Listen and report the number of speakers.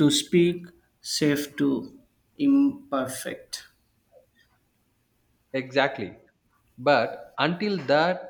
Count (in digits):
2